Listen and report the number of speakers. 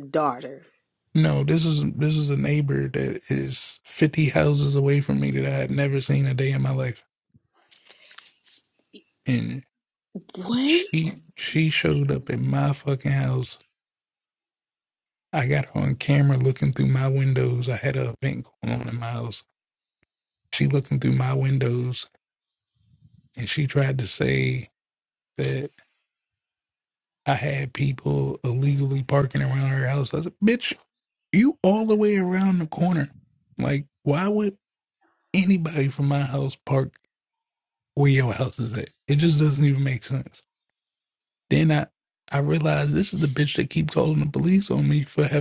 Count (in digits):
2